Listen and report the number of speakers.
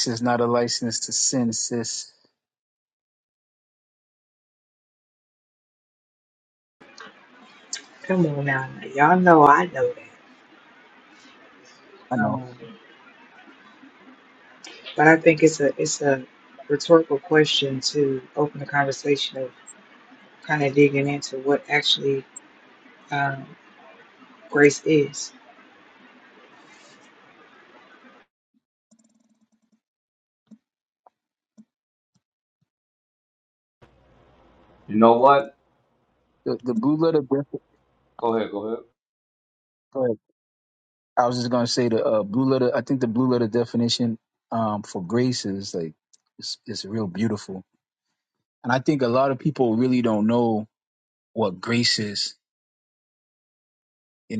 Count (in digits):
3